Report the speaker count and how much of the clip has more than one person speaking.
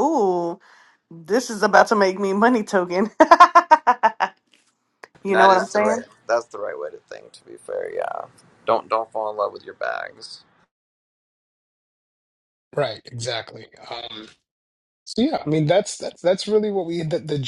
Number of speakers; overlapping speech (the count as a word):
three, about 4%